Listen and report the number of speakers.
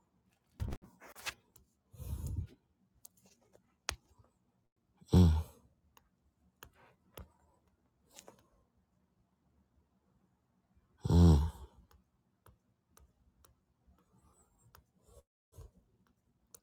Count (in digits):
0